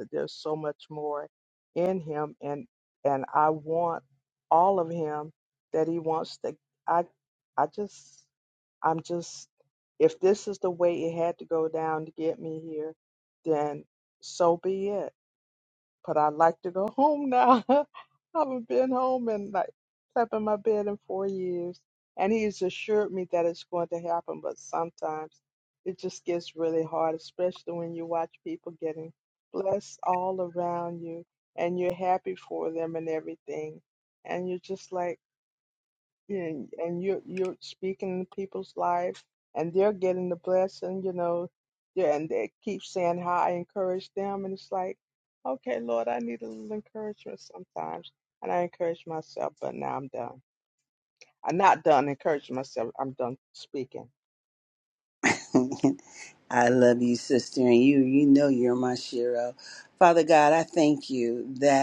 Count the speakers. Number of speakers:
two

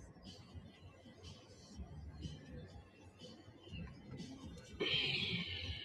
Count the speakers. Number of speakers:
zero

